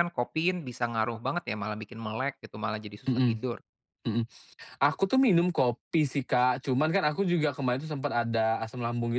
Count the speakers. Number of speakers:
2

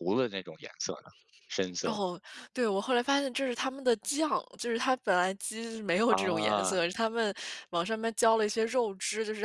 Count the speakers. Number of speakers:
2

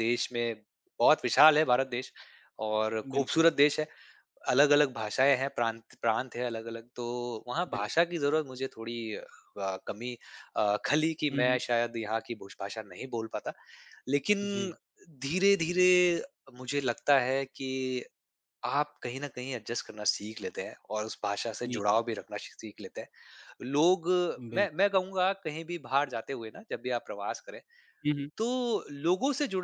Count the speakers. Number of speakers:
2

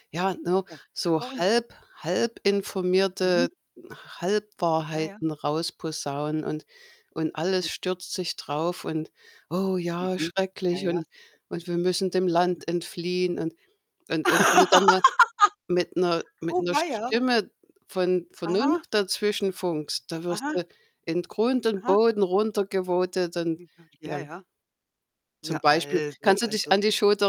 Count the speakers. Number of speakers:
2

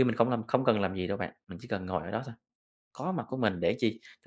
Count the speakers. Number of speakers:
1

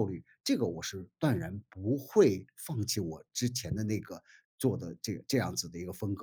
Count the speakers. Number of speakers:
1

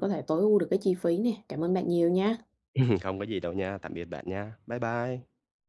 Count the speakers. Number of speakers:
2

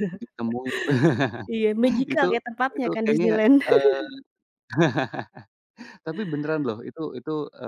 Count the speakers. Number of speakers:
2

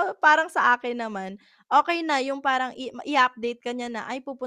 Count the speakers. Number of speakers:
1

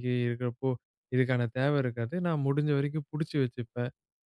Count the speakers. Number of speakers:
1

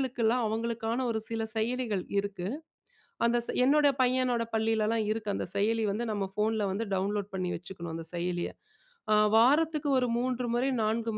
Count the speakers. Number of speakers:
1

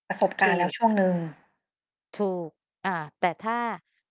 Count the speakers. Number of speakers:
2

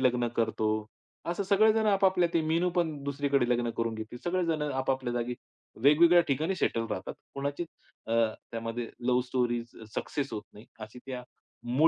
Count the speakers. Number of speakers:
1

